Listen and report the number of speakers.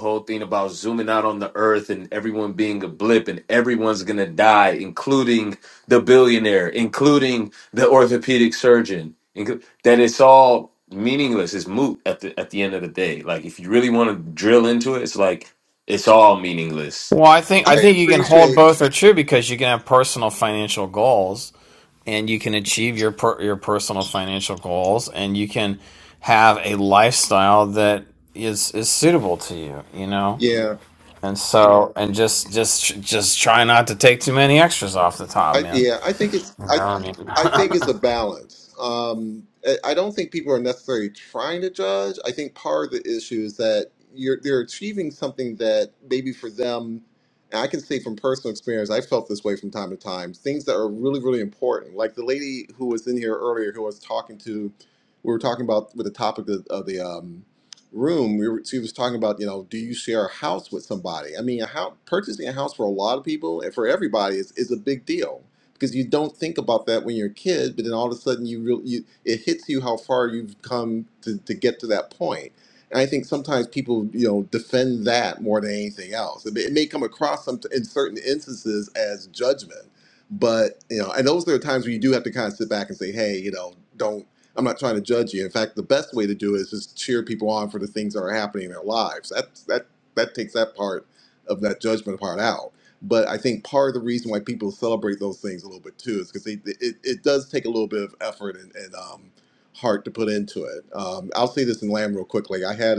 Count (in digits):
3